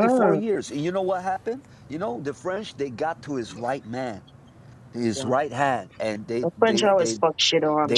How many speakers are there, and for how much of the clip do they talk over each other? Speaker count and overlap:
2, about 18%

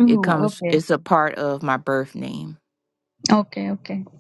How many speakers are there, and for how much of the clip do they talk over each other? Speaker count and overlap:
2, about 17%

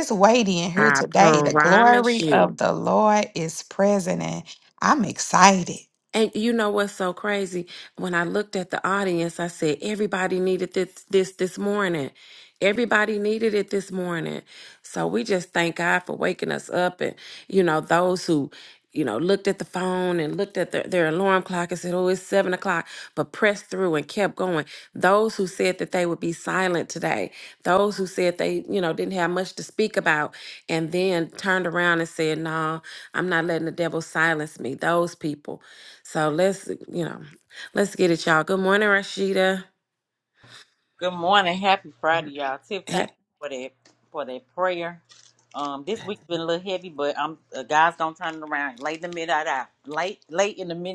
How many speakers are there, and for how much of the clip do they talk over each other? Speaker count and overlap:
3, about 4%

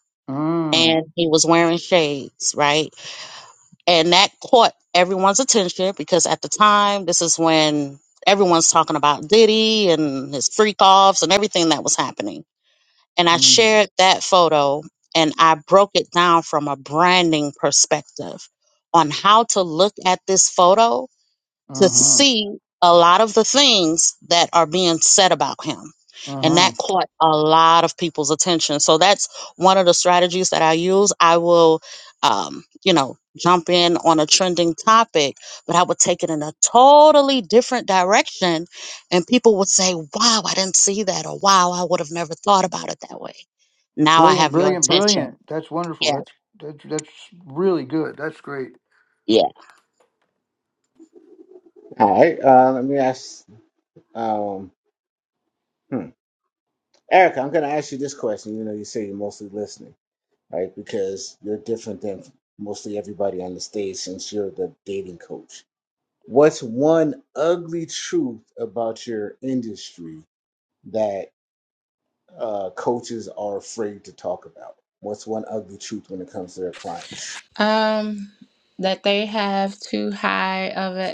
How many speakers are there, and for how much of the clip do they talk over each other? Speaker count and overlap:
4, about 3%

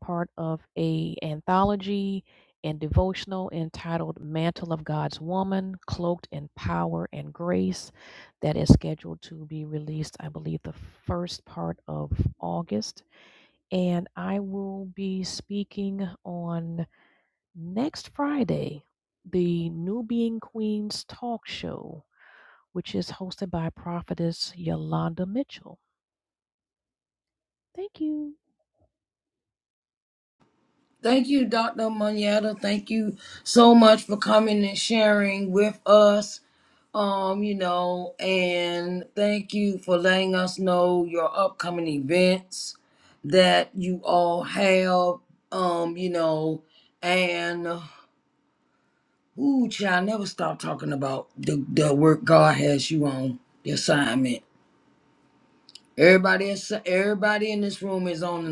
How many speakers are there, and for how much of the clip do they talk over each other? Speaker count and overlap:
2, no overlap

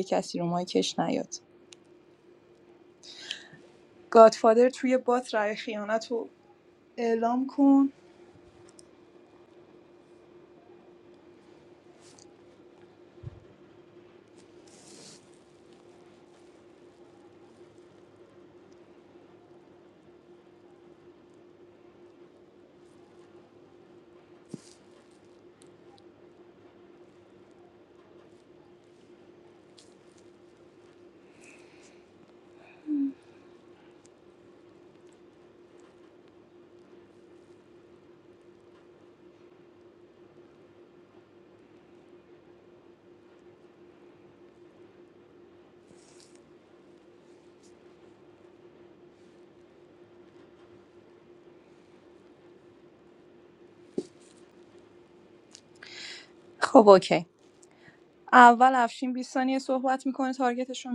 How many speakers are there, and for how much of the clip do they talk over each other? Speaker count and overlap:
1, no overlap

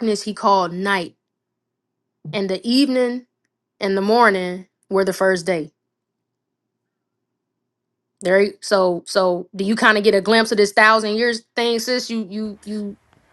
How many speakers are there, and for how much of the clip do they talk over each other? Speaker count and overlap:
1, no overlap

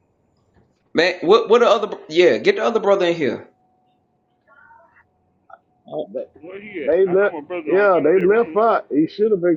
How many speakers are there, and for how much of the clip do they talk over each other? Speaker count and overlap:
3, about 14%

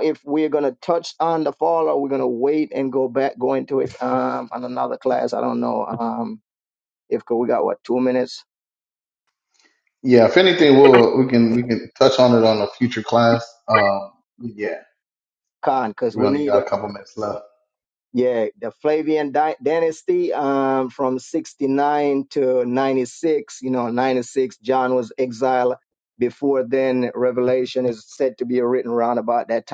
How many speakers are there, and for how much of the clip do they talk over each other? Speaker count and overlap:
2, about 1%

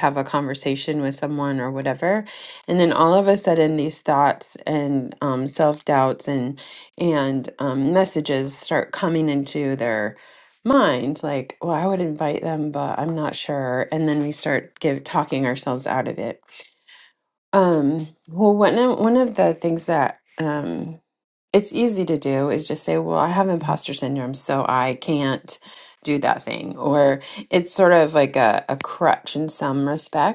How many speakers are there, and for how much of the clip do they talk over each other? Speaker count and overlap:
1, no overlap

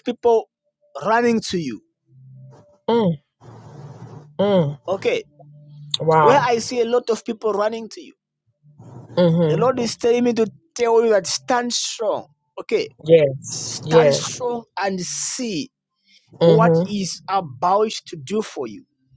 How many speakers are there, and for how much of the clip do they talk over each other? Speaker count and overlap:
2, about 7%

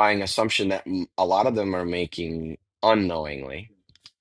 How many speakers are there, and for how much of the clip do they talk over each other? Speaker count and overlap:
1, no overlap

